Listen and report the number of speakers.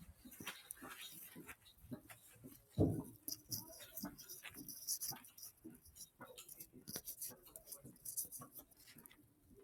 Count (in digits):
0